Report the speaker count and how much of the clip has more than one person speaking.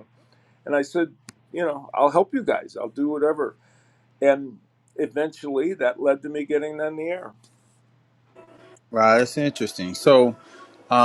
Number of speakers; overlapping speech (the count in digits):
2, no overlap